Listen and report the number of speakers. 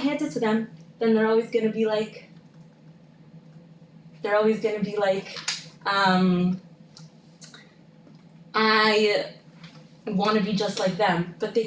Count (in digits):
1